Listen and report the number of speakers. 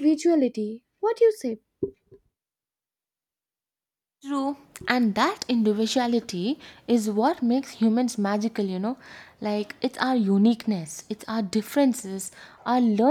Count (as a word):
two